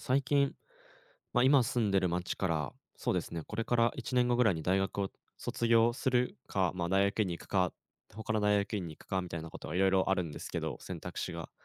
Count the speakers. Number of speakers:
1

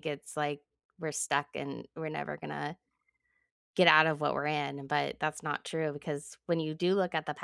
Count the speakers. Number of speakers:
1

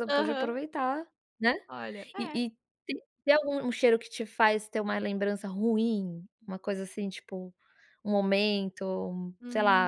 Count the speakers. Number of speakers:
2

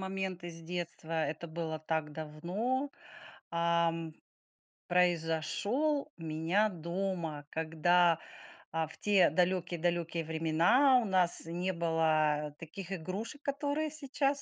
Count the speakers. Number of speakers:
1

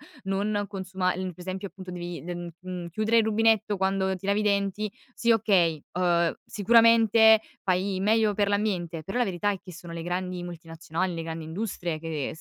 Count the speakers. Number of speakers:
1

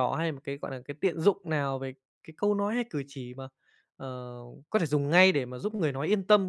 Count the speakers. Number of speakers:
1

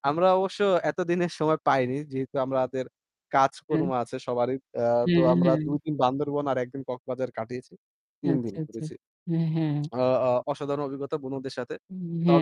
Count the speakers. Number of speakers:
2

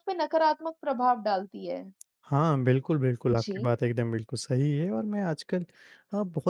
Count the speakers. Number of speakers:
2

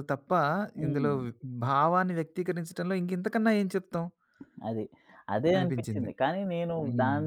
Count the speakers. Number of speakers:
2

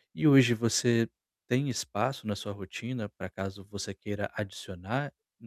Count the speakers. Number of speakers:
1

